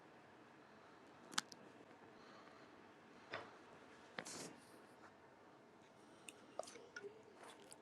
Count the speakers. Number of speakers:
0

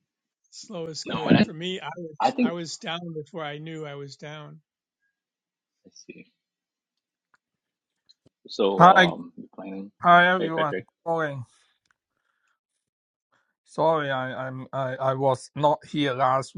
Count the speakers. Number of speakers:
3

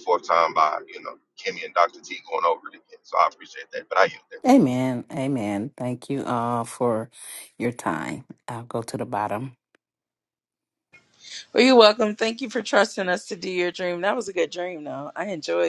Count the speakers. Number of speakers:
3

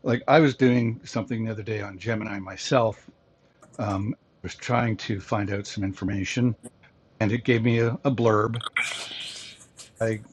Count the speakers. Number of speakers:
1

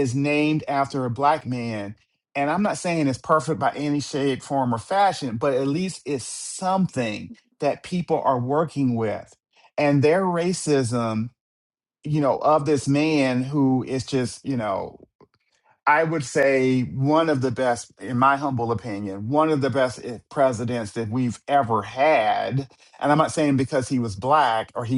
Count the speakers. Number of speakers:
1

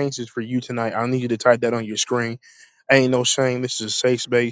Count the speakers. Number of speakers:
1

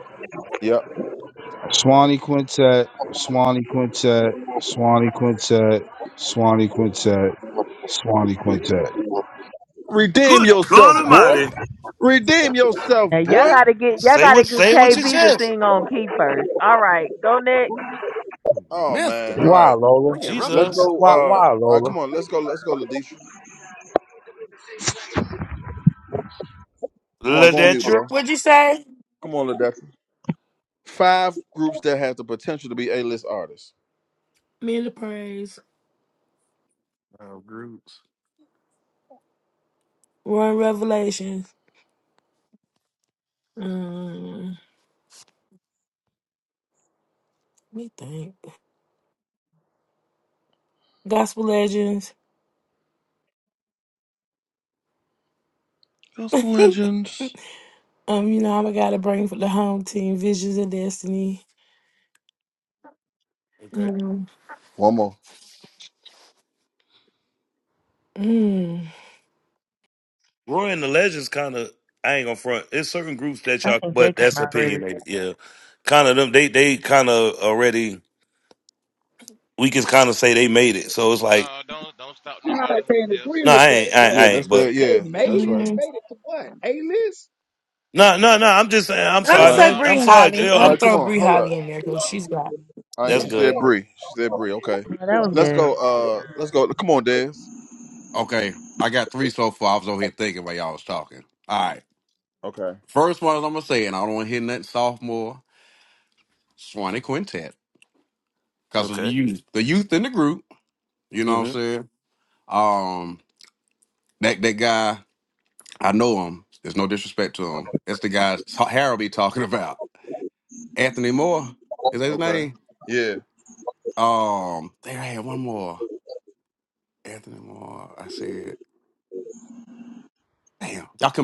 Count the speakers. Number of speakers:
8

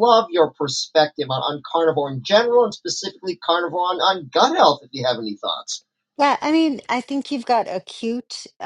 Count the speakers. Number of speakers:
2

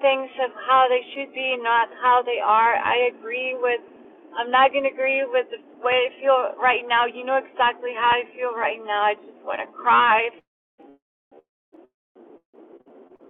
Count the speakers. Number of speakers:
1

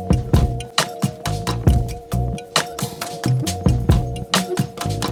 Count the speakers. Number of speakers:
0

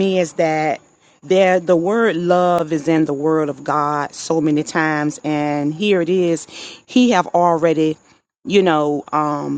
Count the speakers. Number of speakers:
1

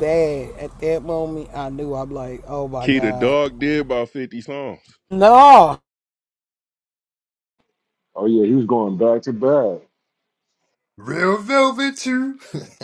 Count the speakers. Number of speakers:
4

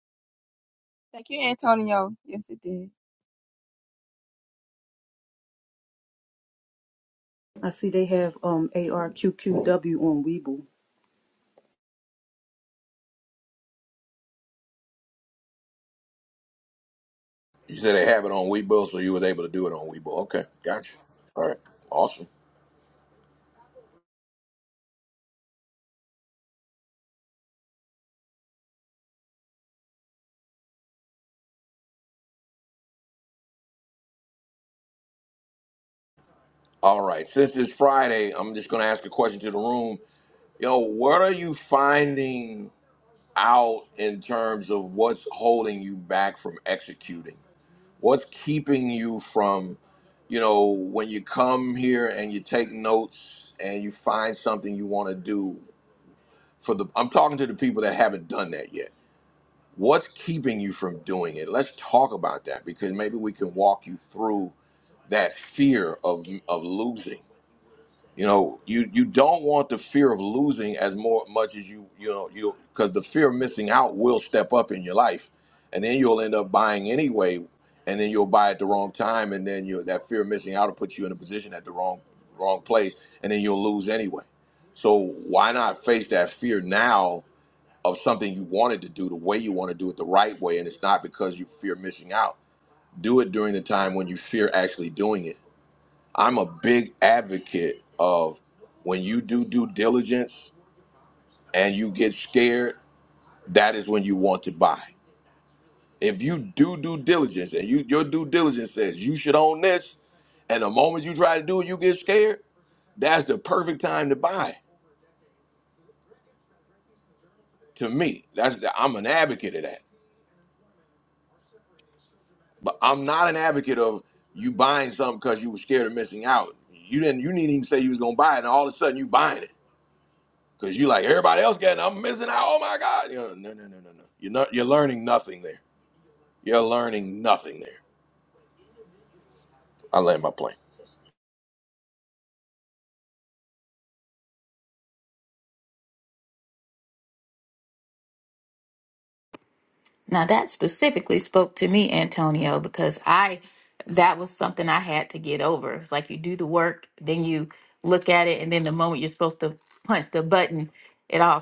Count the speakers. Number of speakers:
4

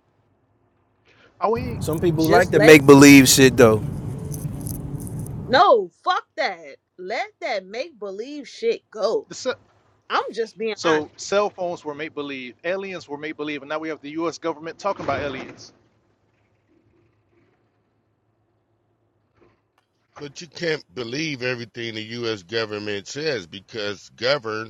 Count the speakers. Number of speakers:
4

